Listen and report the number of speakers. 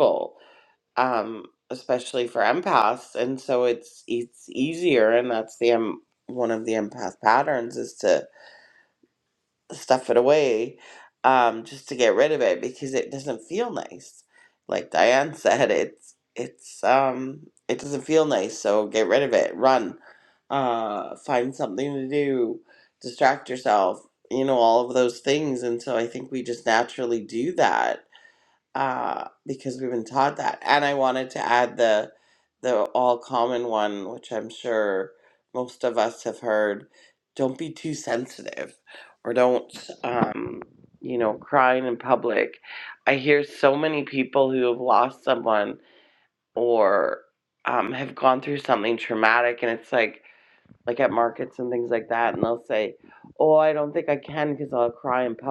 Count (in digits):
1